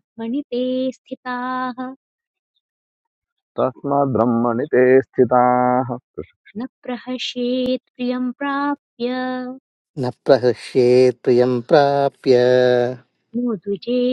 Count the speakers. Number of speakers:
three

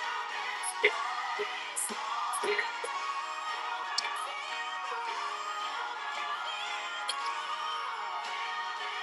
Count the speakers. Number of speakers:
zero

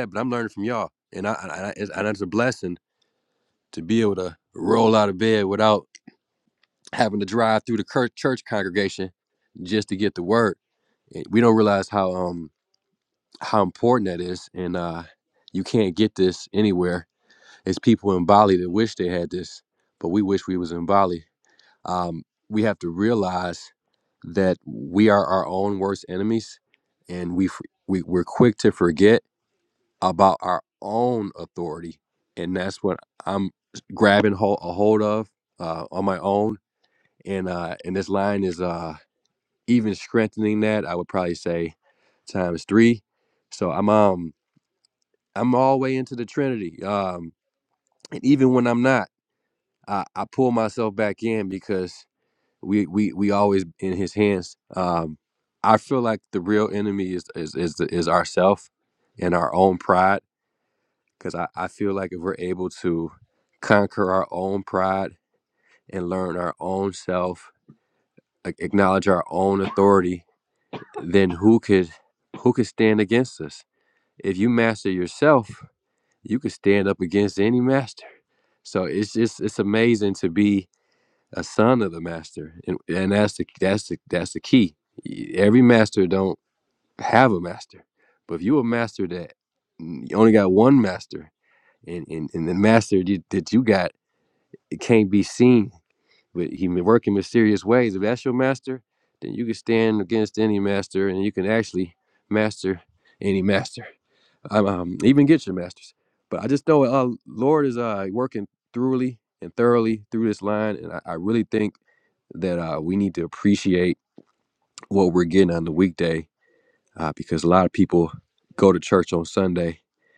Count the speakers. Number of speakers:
one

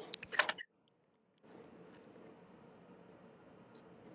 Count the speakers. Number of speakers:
zero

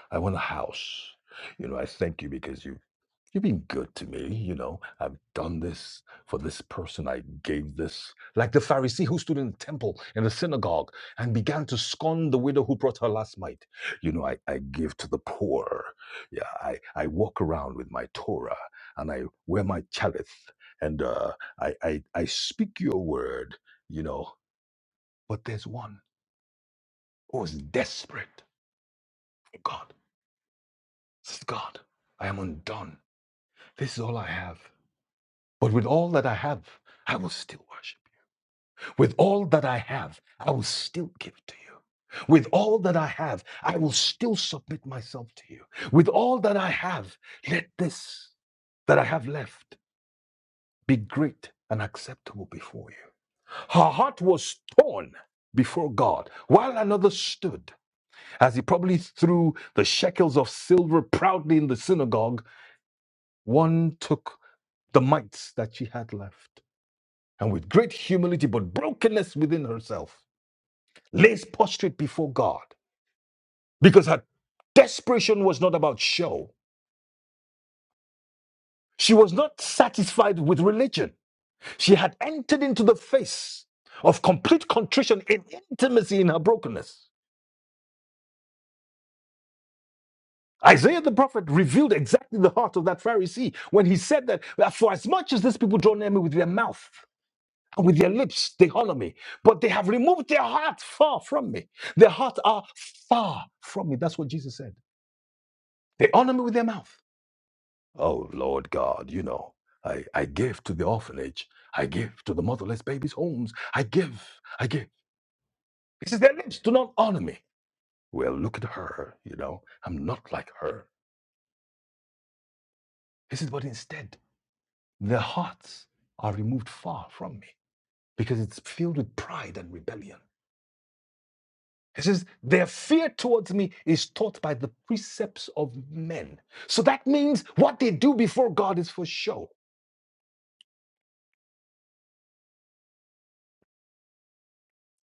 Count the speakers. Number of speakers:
one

